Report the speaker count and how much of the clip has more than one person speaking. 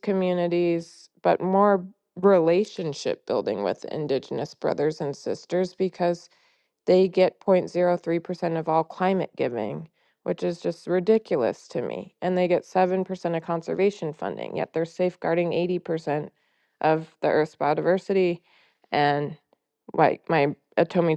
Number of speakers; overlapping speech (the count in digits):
1, no overlap